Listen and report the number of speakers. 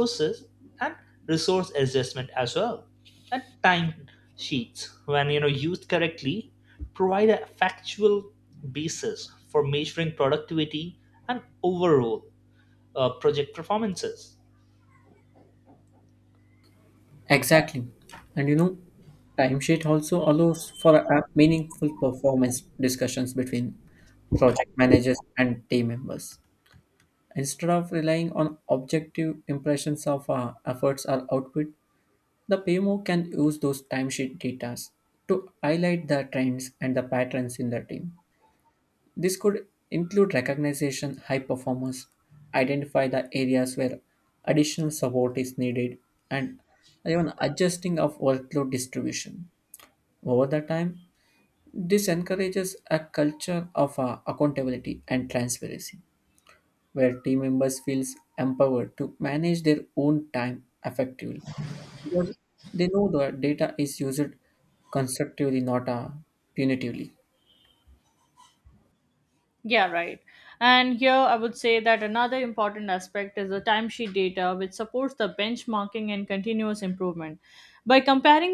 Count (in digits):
3